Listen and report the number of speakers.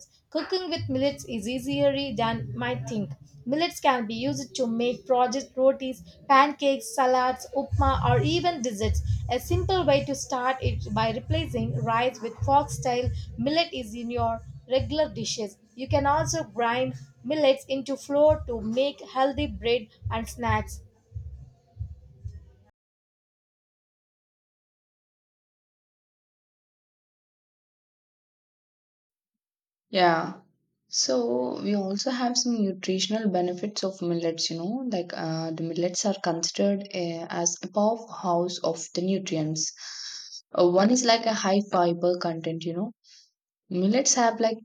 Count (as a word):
two